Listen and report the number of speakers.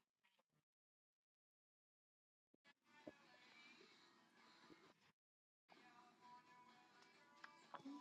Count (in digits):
0